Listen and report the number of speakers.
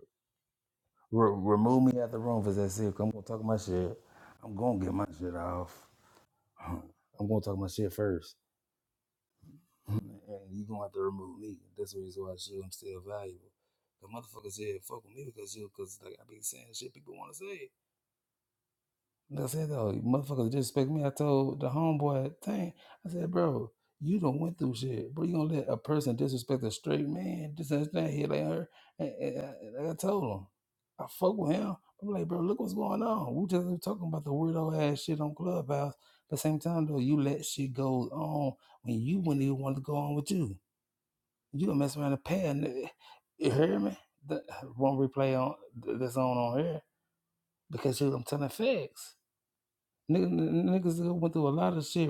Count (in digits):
1